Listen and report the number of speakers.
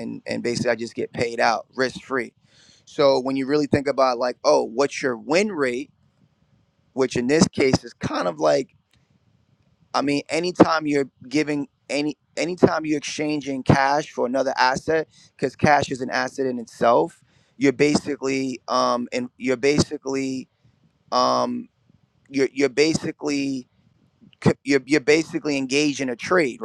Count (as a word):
one